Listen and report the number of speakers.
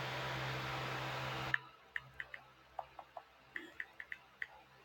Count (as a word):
zero